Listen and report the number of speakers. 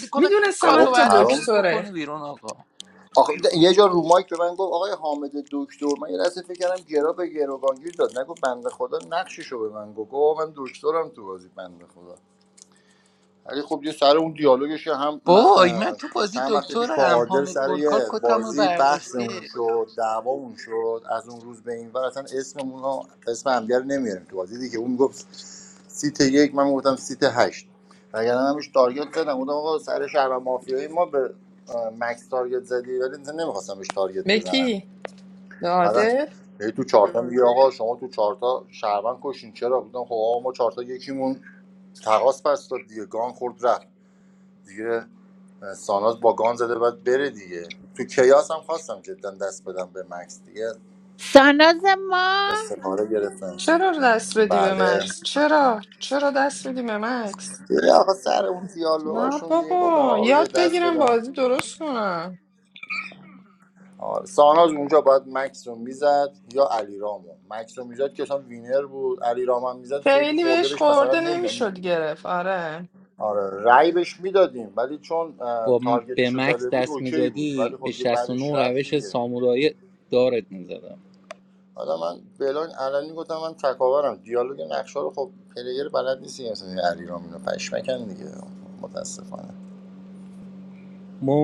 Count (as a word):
four